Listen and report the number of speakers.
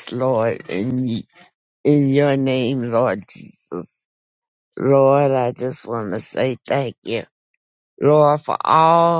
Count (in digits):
1